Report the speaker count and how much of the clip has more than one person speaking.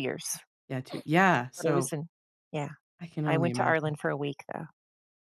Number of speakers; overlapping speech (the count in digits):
2, about 15%